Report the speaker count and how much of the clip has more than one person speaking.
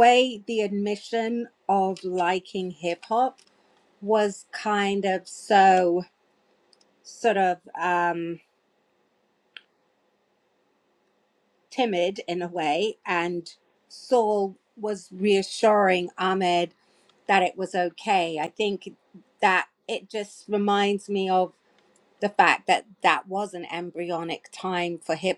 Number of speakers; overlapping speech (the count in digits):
1, no overlap